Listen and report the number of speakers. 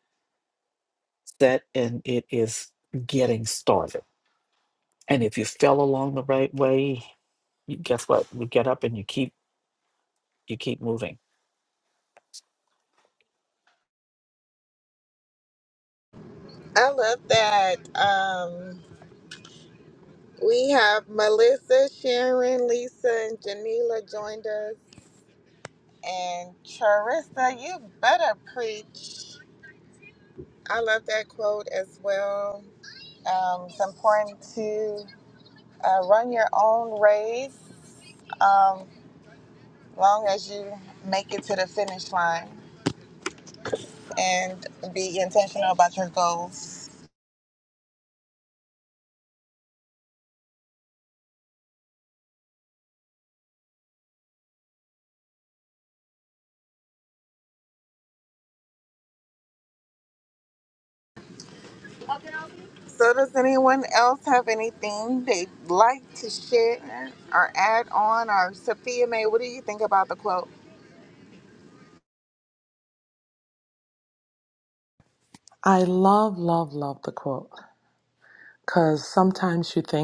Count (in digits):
3